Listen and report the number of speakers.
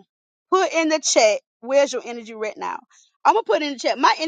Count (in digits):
1